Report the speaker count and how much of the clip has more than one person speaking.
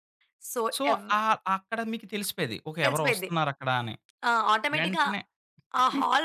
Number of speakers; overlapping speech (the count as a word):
two, about 20%